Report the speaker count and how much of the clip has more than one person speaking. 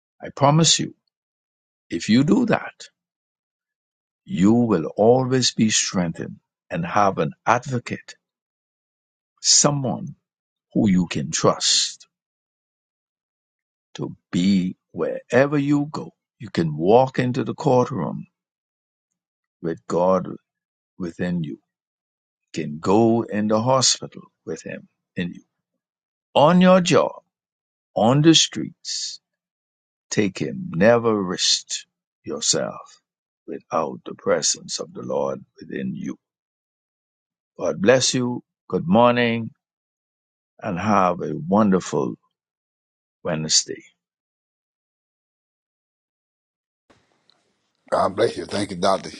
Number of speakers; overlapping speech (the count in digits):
2, no overlap